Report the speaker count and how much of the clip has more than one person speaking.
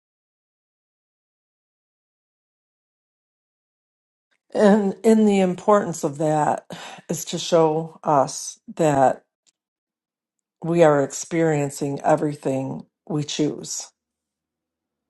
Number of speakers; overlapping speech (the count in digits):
1, no overlap